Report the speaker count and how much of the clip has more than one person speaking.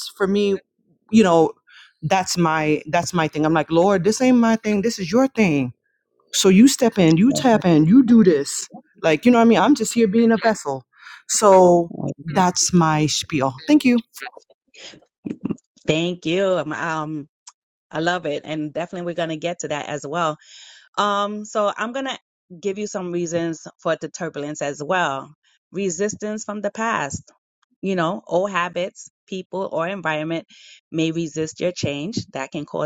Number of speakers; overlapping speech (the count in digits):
2, no overlap